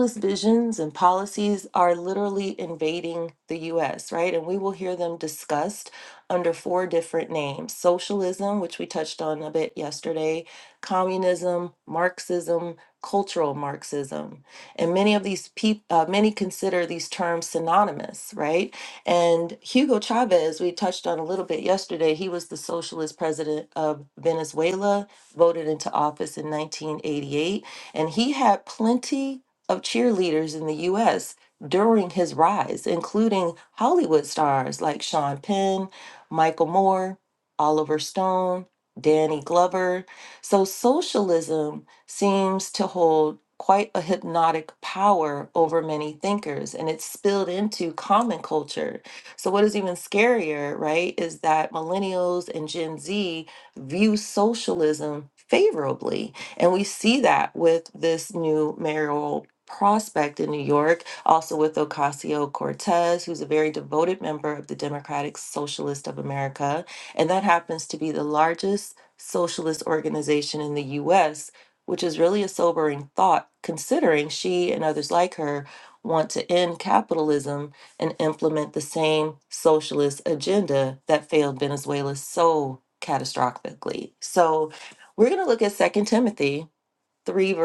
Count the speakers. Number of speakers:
one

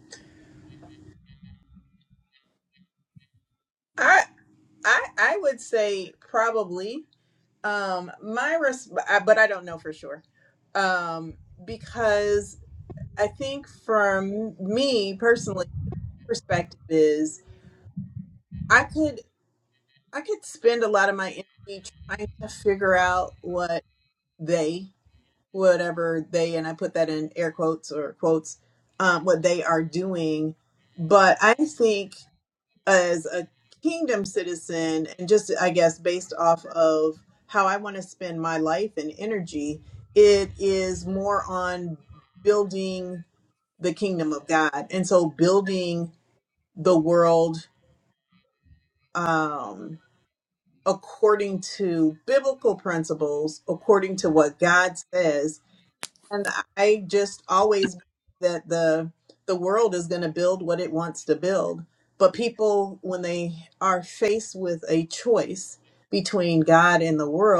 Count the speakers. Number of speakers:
one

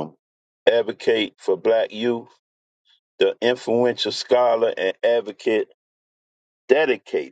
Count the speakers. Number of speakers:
one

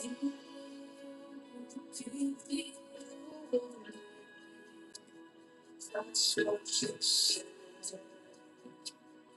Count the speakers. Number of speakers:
zero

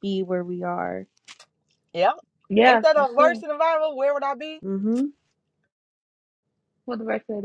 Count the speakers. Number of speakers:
three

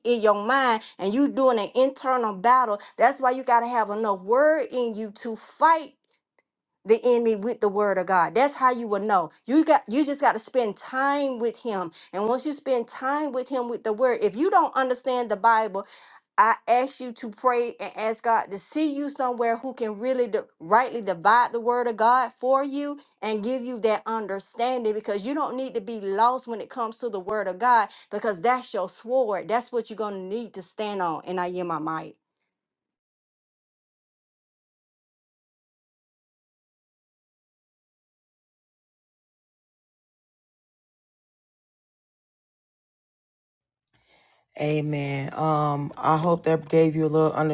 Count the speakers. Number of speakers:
two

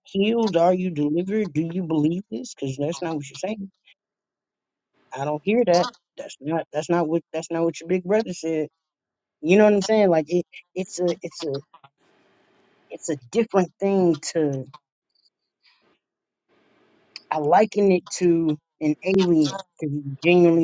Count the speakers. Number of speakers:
one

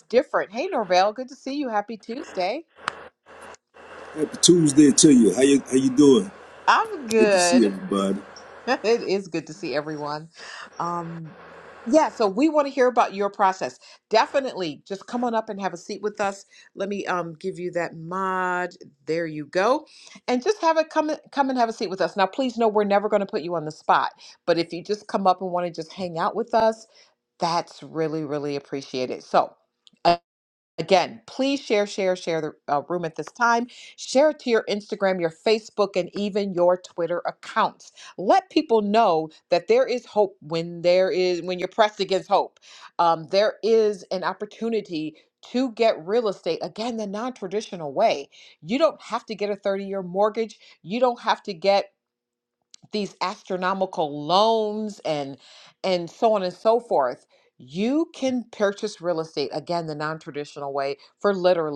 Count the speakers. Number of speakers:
two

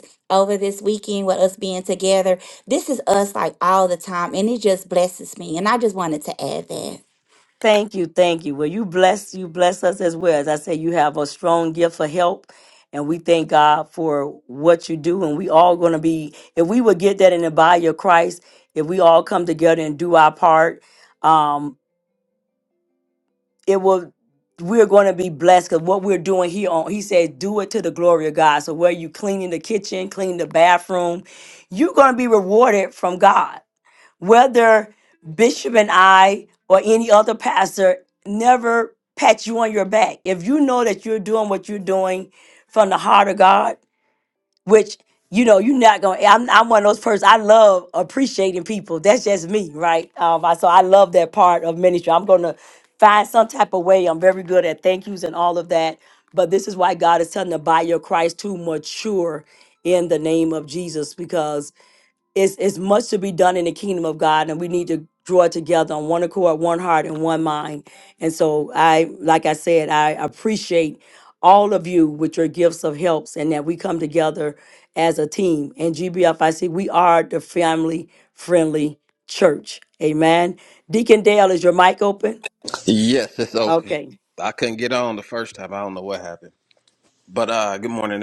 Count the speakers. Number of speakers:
three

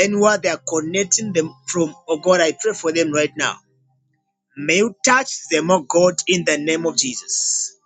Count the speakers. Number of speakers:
one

